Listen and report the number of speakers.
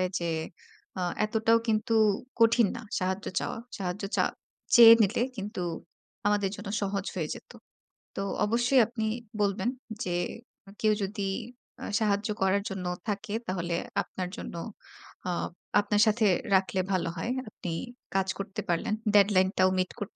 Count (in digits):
1